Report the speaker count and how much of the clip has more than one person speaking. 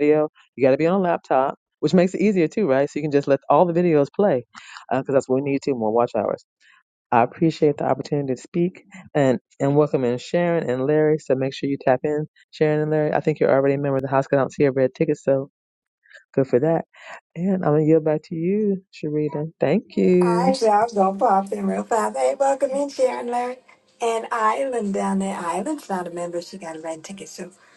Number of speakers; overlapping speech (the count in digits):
2, about 1%